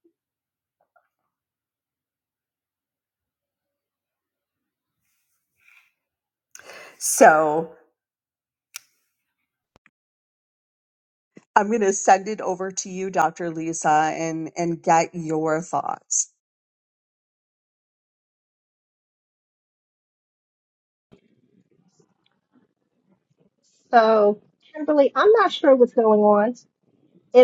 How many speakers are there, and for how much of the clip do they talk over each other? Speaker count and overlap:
2, no overlap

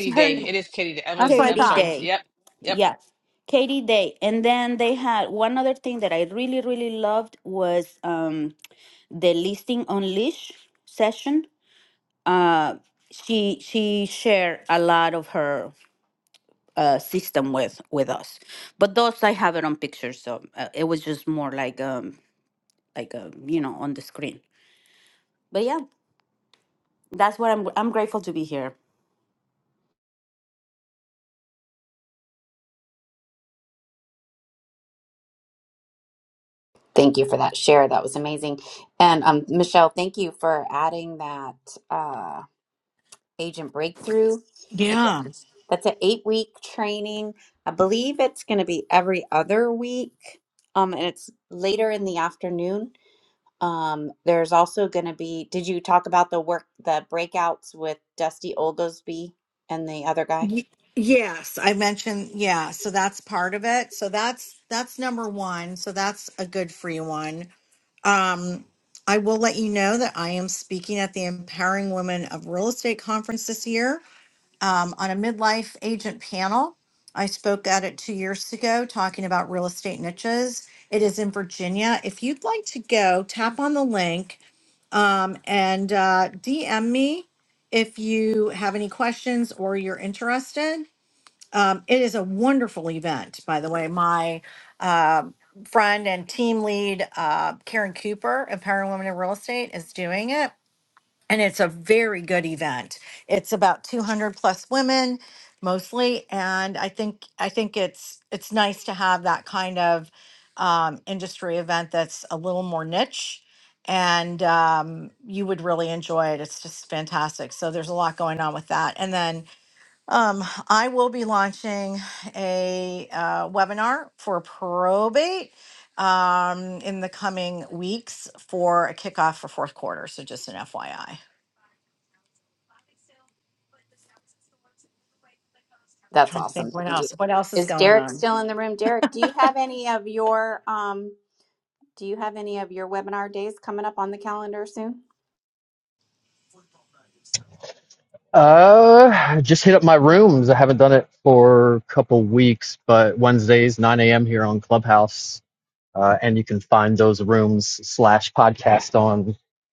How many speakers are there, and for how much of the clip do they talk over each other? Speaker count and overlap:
5, about 2%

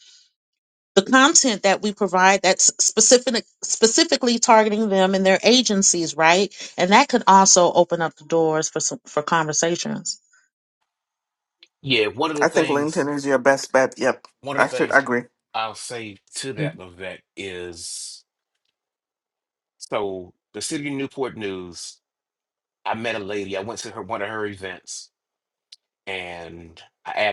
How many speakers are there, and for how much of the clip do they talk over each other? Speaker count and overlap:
3, about 4%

